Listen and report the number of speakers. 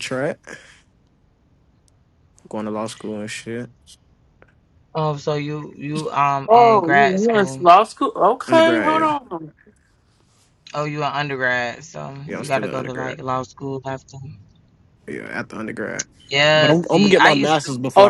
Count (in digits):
3